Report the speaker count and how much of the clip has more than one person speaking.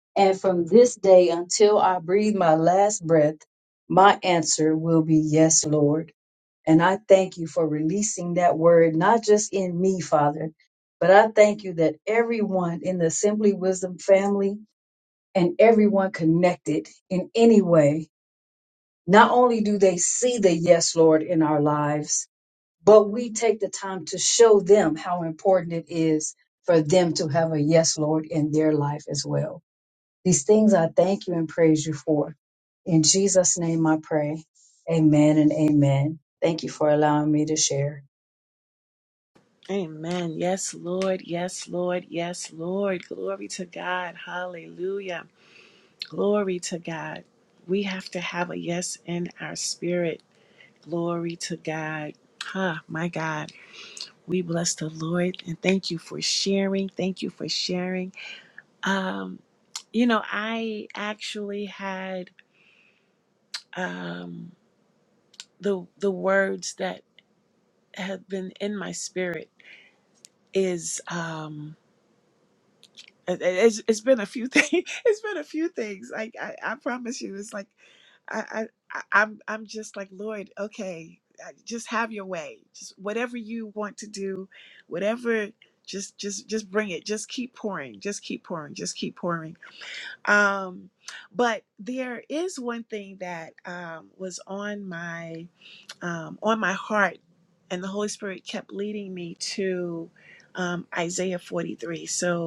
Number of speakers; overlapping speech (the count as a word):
two, no overlap